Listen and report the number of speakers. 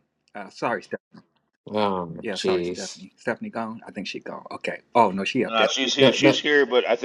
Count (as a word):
three